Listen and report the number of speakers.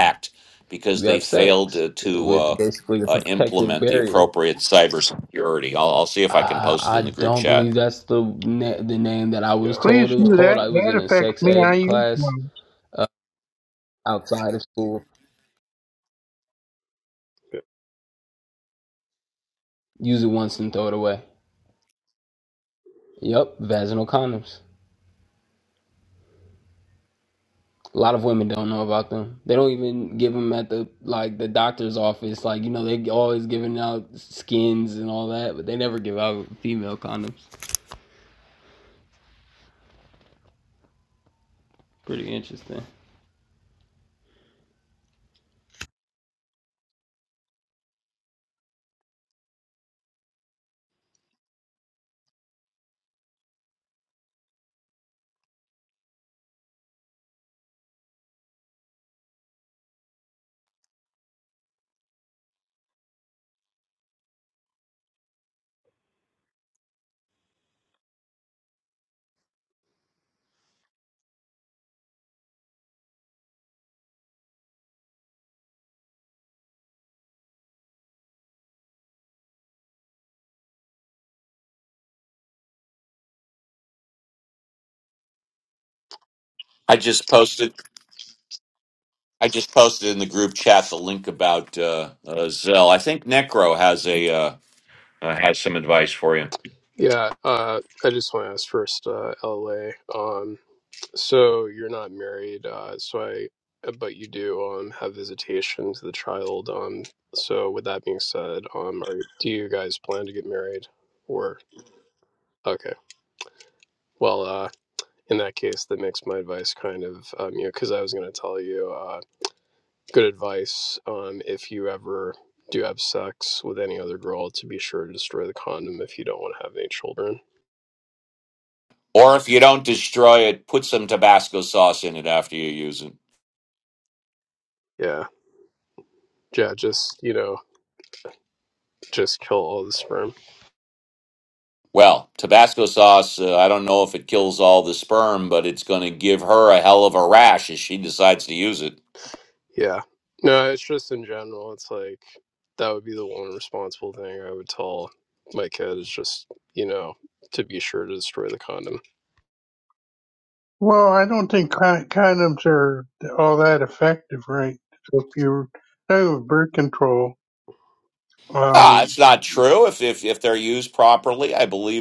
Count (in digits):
4